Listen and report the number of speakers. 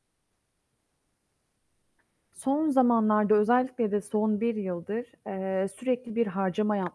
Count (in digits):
1